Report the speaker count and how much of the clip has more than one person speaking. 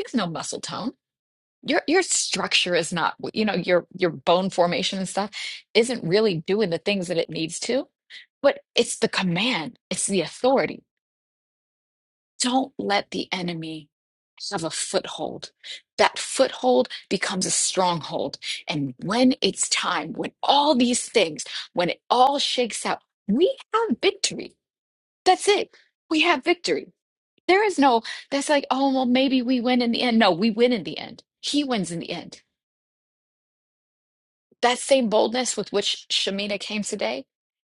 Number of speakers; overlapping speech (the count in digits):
1, no overlap